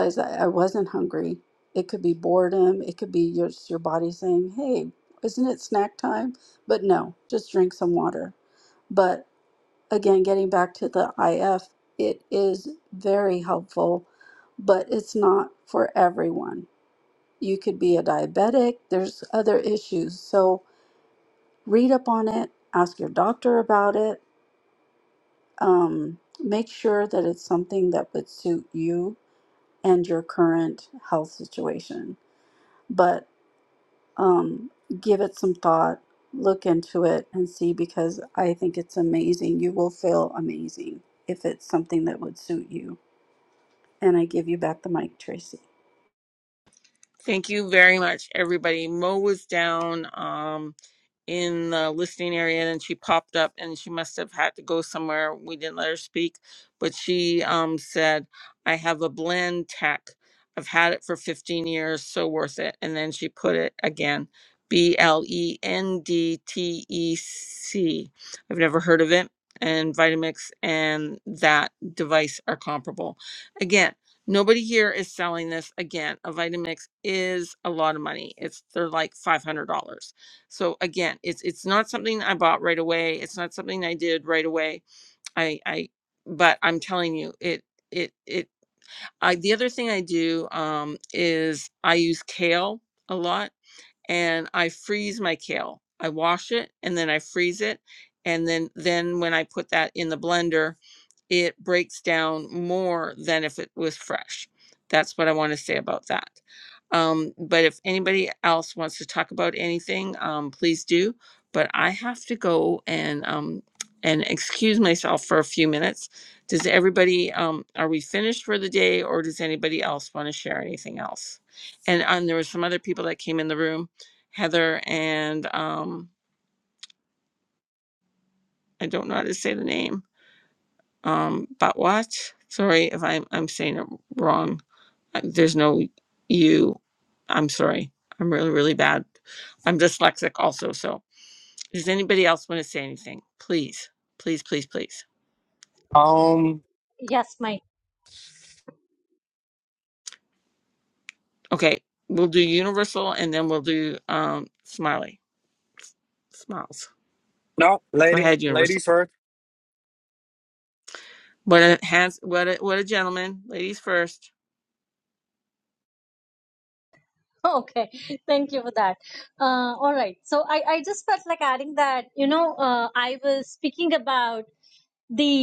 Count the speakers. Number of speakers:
four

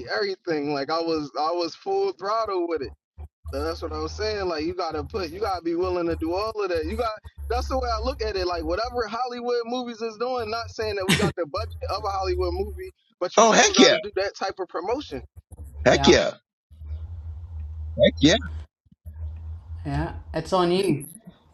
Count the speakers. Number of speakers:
three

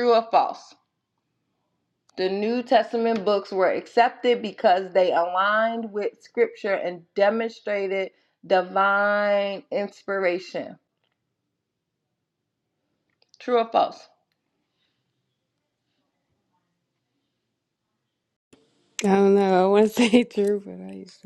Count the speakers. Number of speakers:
two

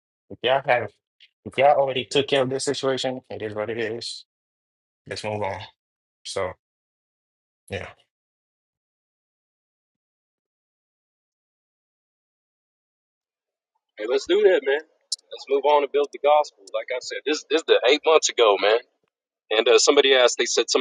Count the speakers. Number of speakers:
two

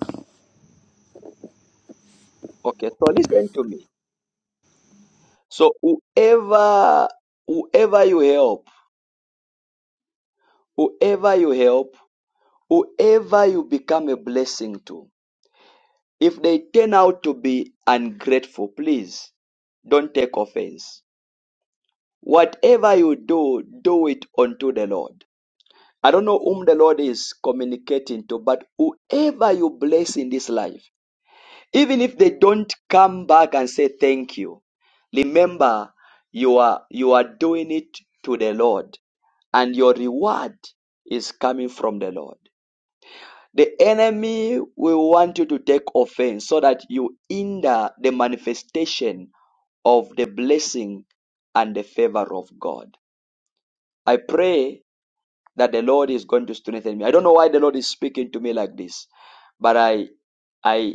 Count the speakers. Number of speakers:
one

